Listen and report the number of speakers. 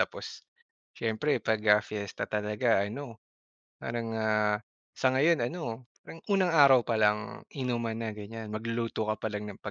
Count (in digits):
1